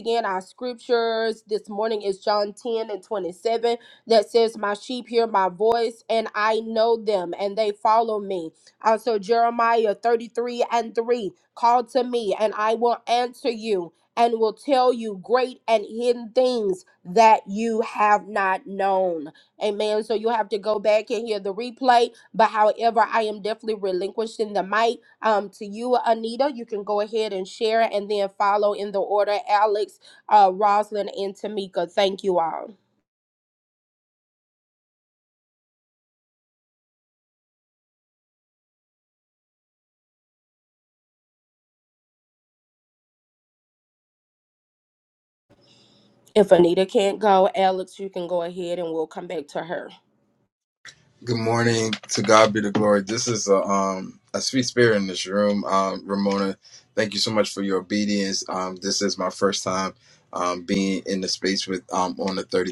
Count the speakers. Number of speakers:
2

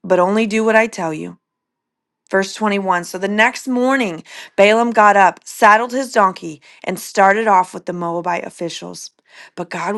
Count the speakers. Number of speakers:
1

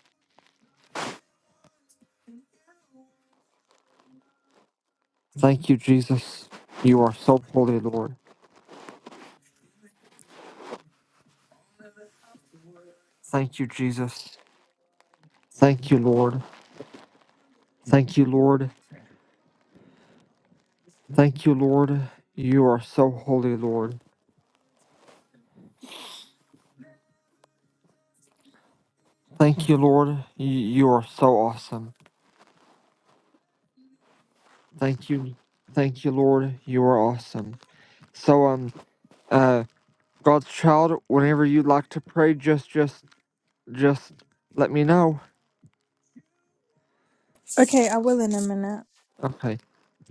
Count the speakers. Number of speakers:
2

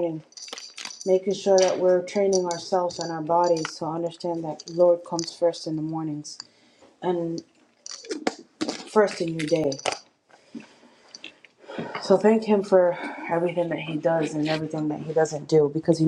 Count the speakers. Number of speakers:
1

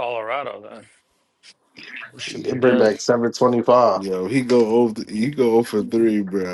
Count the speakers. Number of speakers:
3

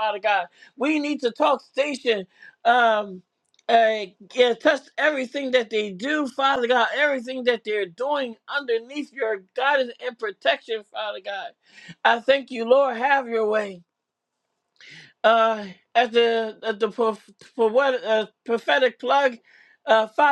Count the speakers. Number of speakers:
1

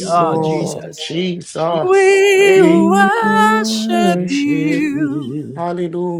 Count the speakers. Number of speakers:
3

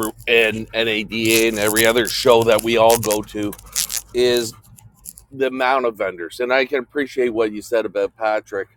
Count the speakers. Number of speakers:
1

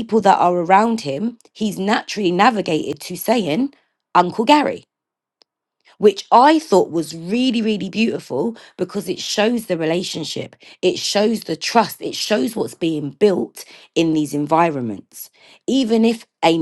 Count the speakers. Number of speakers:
1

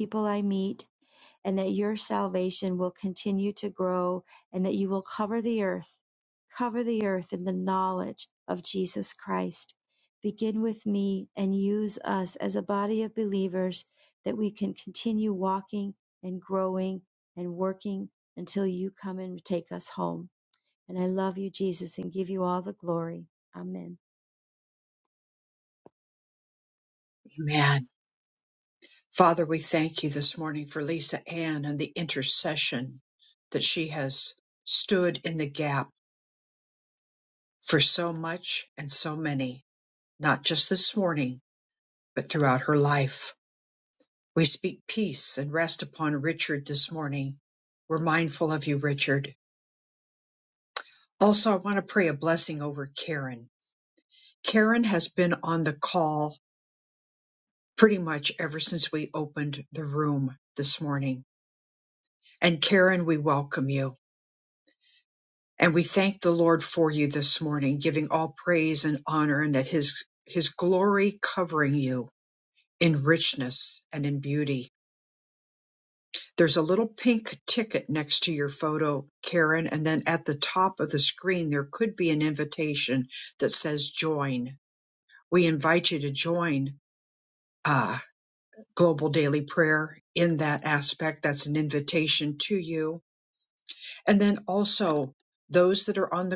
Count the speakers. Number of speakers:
2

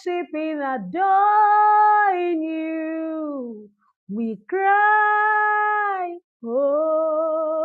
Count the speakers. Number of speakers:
1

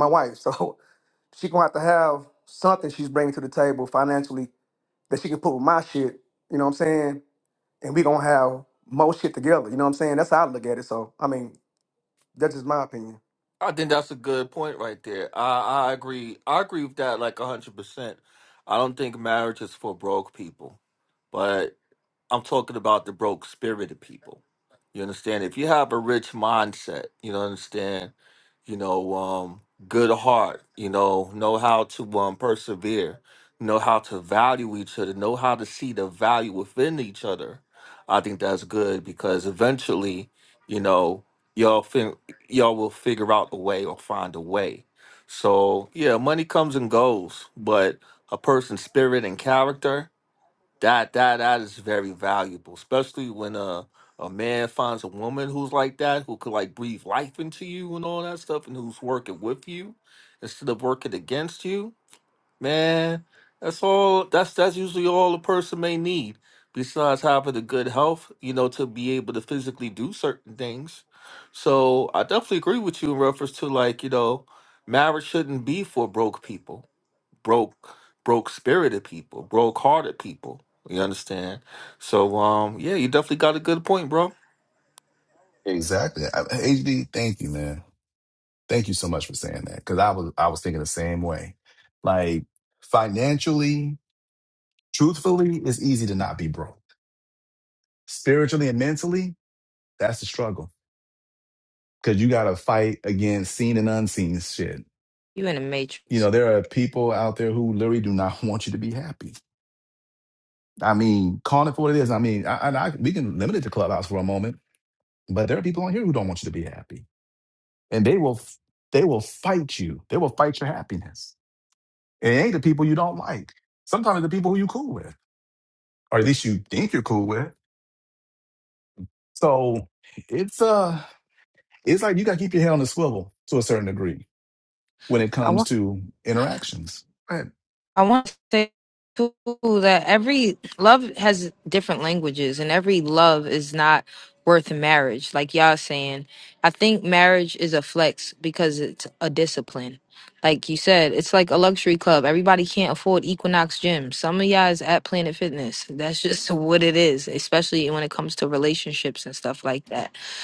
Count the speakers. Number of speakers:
4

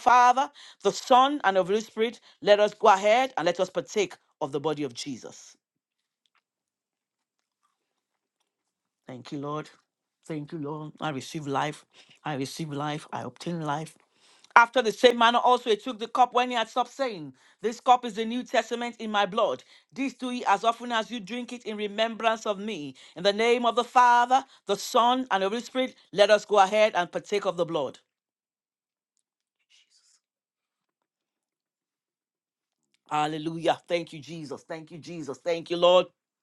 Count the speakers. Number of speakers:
1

